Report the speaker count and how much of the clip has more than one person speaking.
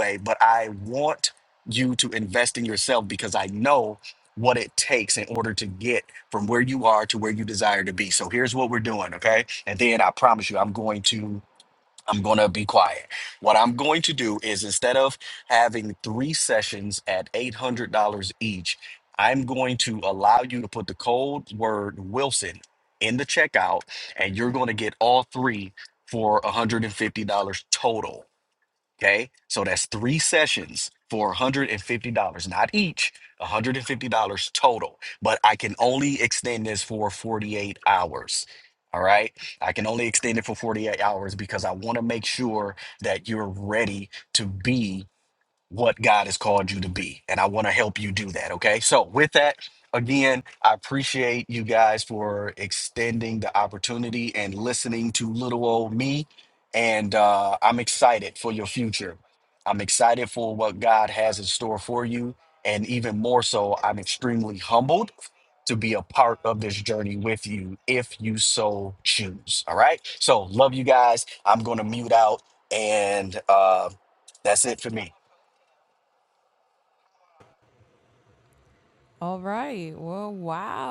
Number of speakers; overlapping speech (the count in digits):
2, no overlap